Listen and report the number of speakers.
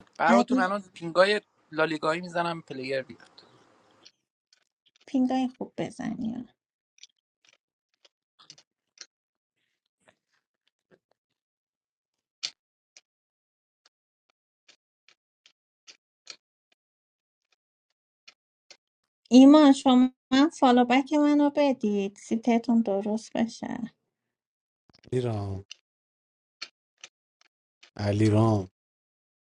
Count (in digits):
3